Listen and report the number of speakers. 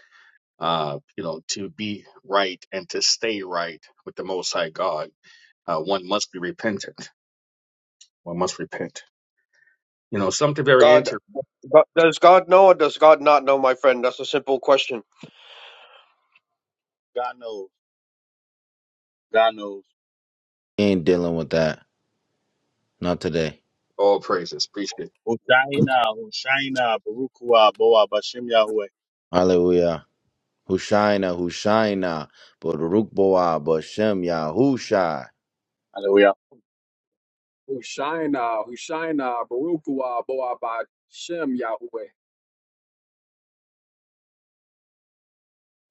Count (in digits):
5